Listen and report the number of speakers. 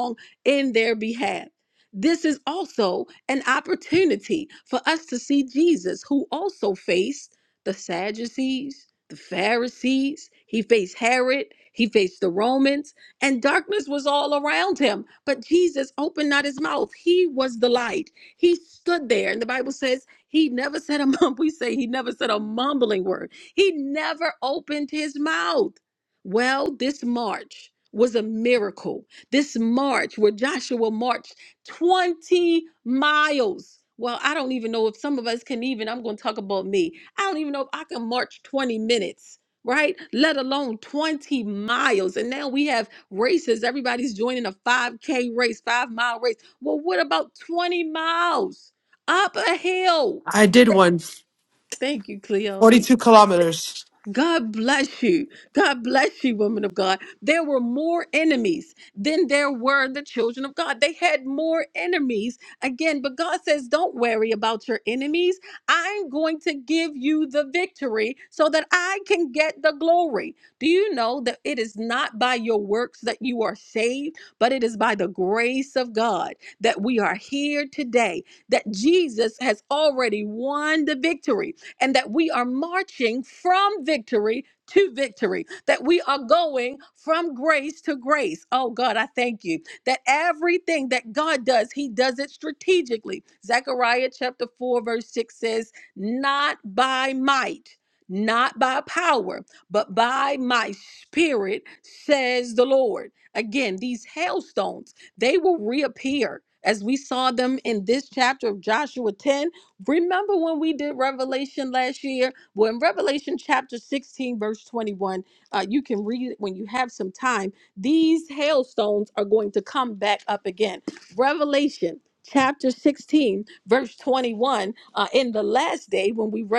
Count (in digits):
2